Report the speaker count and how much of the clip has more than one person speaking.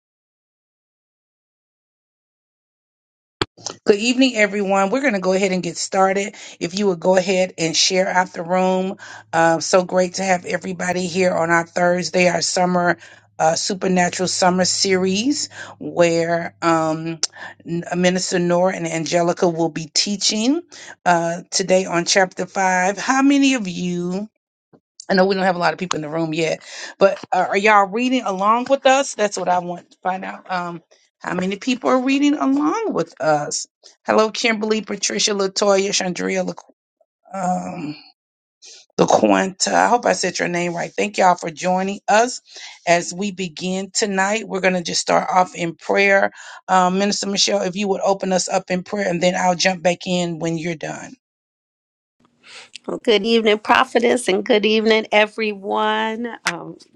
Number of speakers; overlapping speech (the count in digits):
2, no overlap